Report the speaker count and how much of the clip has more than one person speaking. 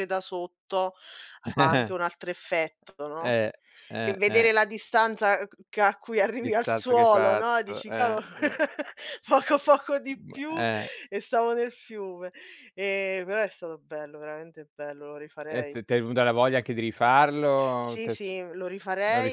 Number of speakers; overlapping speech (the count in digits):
2, about 18%